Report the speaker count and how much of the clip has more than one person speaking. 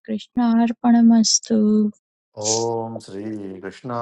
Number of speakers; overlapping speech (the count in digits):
2, no overlap